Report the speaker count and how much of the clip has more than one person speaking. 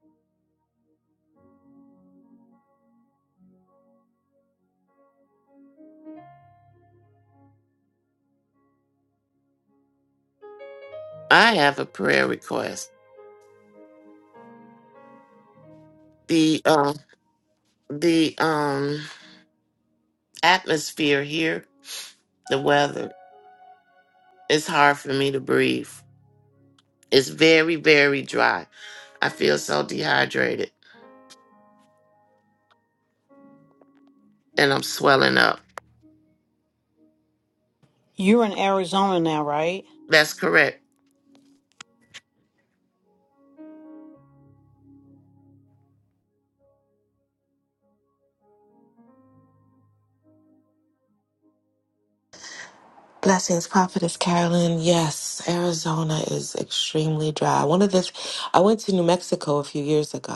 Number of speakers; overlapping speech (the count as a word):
three, no overlap